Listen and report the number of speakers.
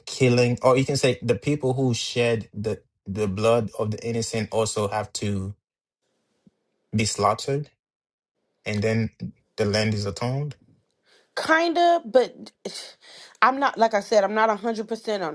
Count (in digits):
2